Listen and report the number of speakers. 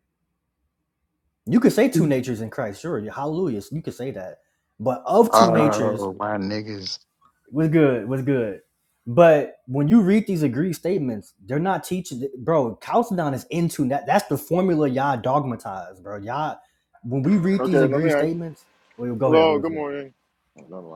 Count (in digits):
3